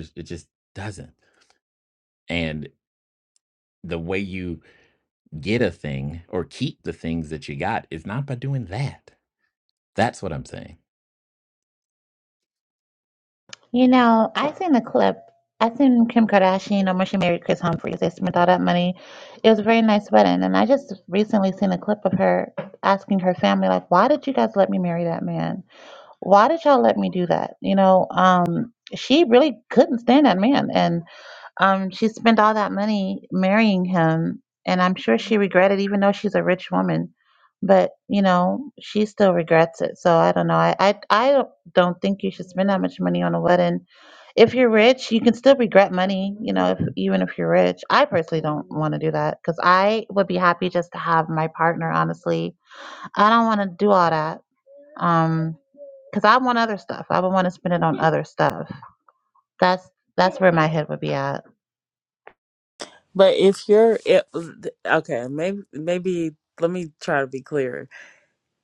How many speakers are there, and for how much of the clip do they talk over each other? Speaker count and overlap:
three, no overlap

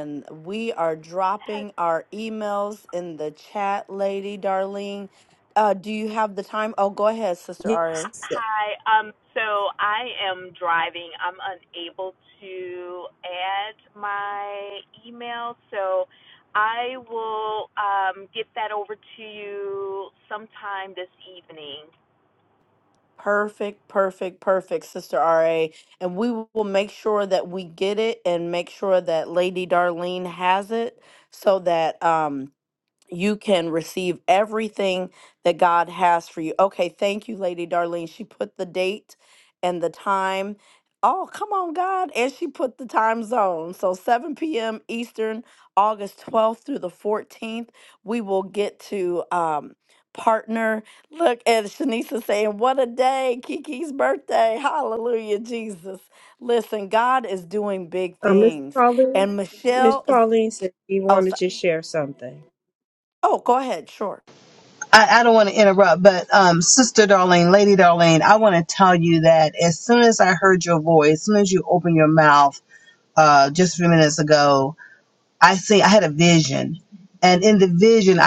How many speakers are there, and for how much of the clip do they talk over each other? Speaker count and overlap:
four, about 2%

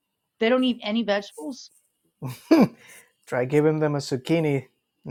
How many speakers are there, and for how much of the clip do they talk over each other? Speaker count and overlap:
two, no overlap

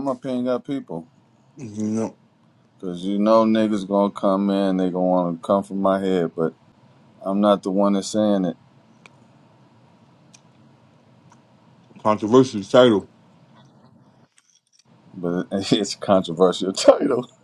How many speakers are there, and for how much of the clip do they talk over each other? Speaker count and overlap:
two, no overlap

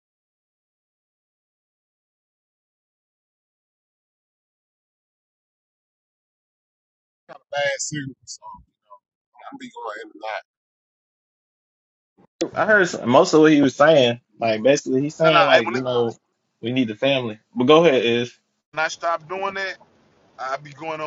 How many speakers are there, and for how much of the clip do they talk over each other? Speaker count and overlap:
three, about 3%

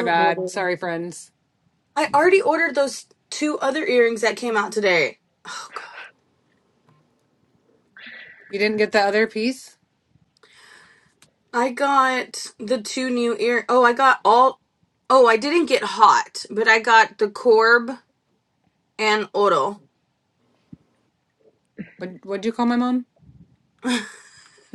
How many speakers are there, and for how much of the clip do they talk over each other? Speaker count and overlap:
two, about 3%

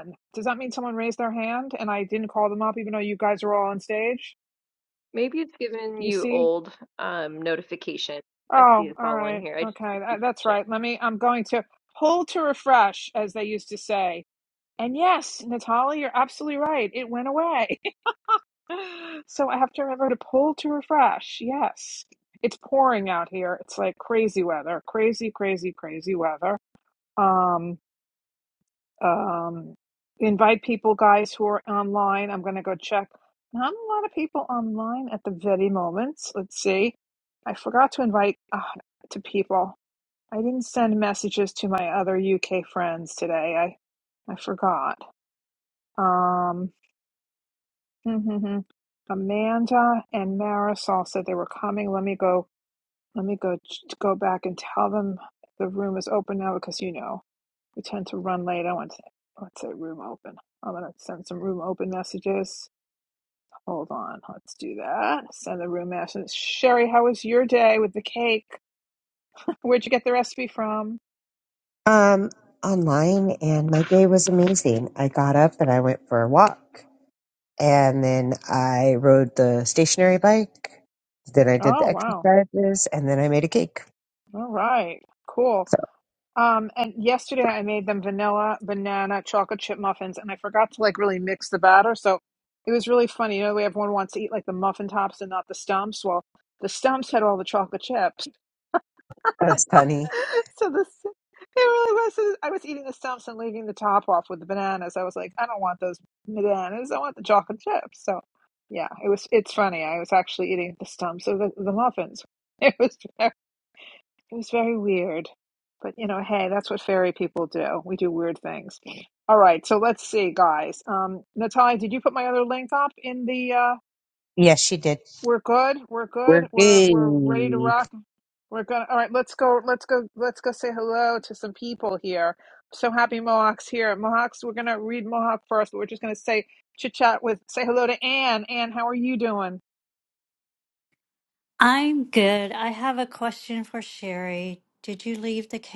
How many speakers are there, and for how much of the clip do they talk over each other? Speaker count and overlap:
four, about 3%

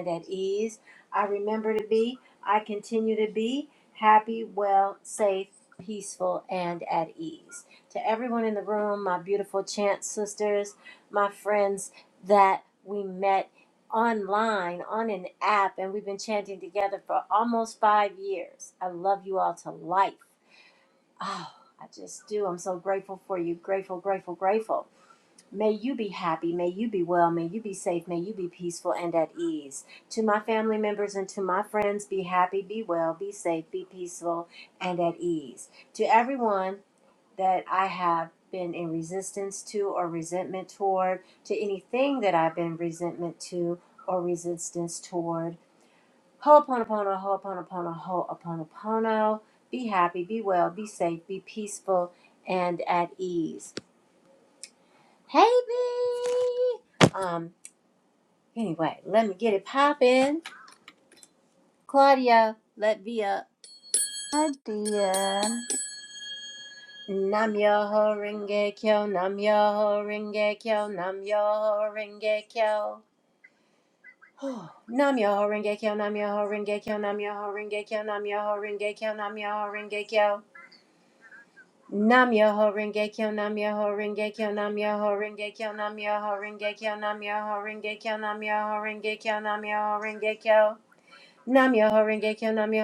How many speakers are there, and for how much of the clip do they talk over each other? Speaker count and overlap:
two, no overlap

